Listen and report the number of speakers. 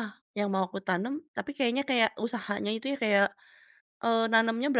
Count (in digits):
1